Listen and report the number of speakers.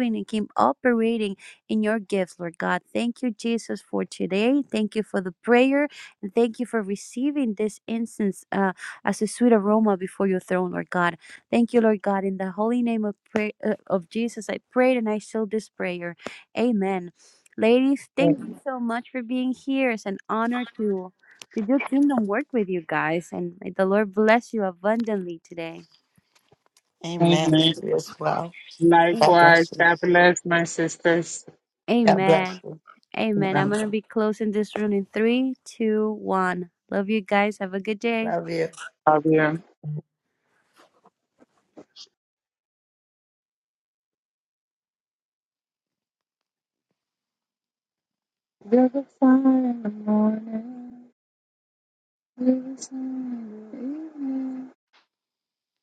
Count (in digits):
3